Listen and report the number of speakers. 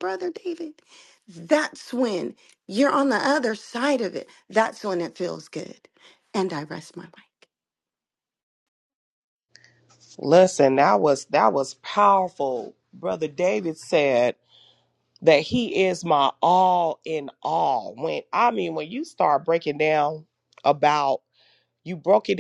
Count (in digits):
2